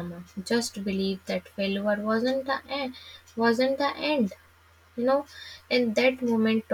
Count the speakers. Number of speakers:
1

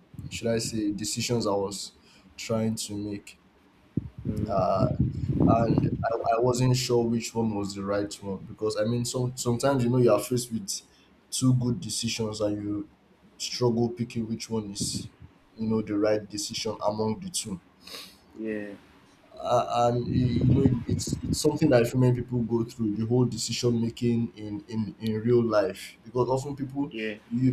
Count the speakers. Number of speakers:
2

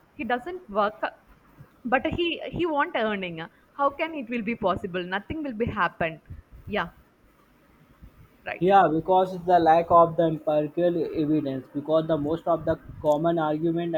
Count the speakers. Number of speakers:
2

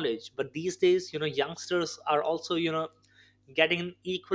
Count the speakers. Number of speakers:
1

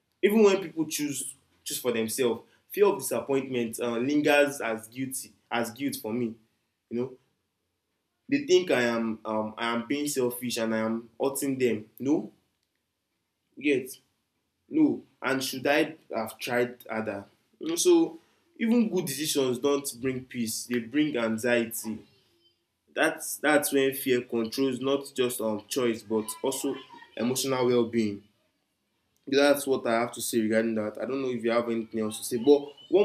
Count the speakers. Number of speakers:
1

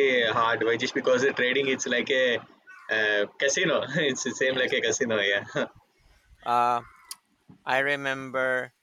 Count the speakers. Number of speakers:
2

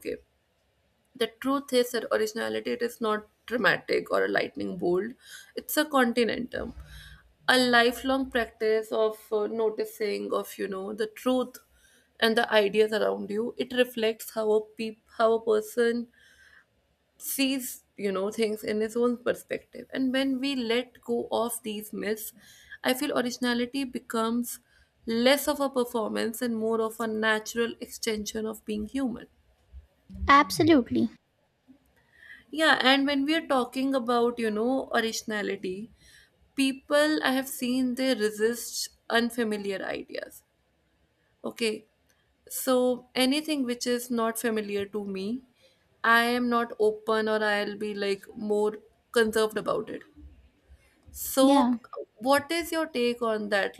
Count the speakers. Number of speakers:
2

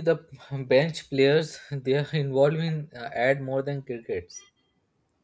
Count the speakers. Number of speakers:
1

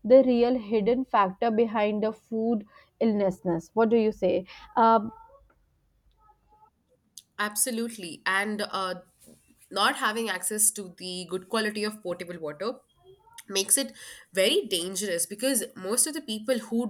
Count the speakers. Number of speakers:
2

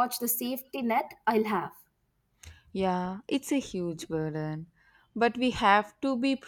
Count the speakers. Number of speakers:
2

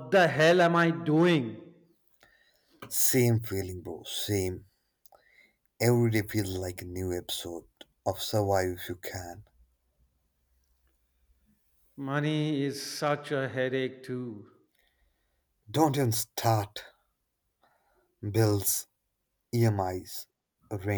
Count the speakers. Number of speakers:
2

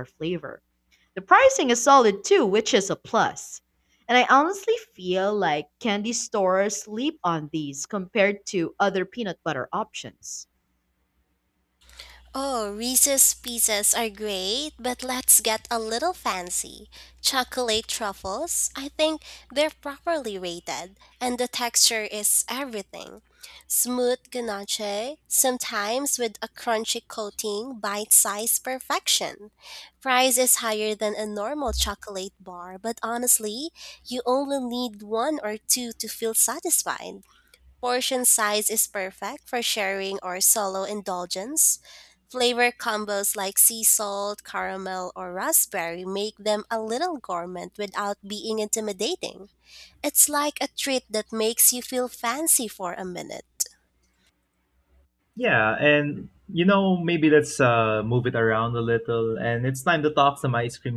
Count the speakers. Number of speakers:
3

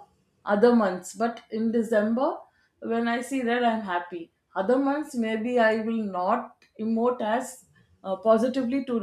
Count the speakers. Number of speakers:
1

